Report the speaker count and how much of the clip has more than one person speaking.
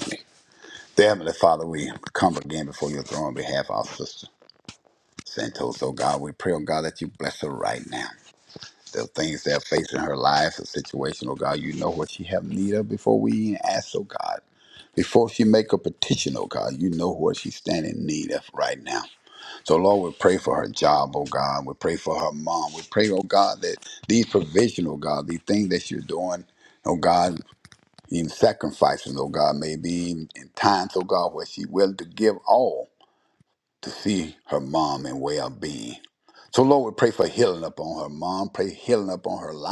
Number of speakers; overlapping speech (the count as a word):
one, no overlap